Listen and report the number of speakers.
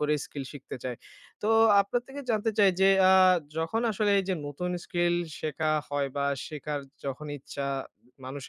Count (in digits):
1